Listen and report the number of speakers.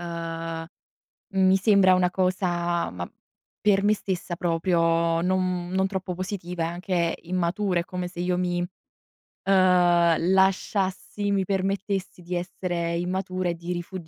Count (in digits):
1